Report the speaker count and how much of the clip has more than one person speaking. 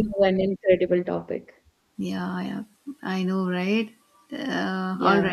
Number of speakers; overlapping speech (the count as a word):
two, about 8%